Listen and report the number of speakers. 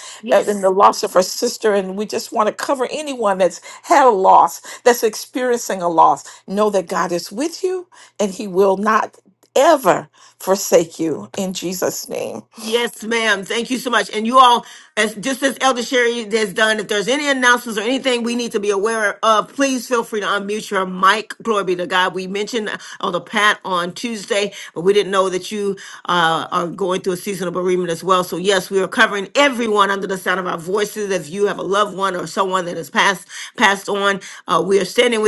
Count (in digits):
2